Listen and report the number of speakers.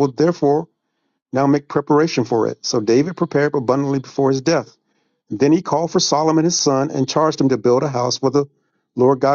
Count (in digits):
1